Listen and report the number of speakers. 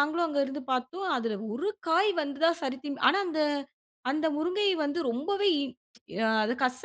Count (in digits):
1